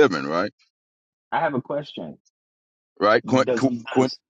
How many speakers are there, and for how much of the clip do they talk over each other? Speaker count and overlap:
two, about 5%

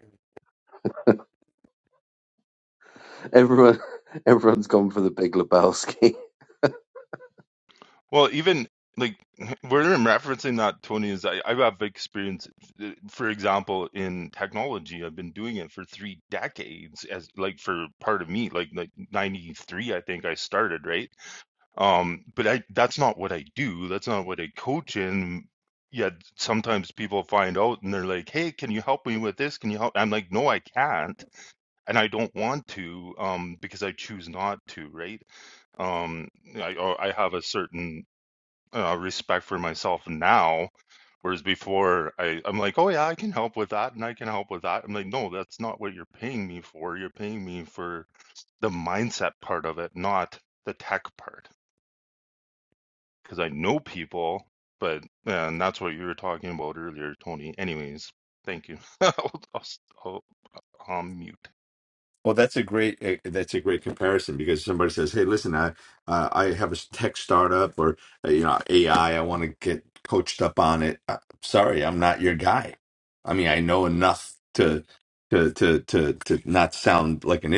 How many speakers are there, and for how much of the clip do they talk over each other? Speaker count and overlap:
three, no overlap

